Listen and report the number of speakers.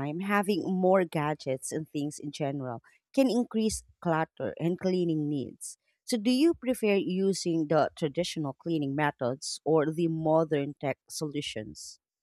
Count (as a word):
one